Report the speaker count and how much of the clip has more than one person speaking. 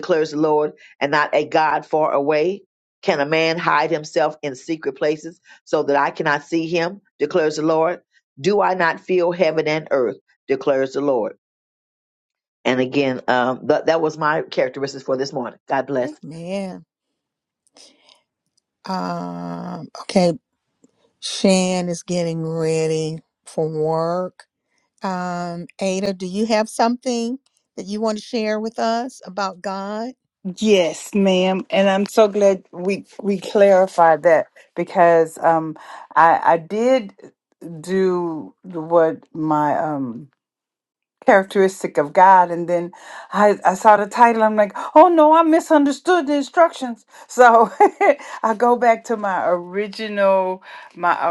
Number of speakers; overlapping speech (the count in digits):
3, under 1%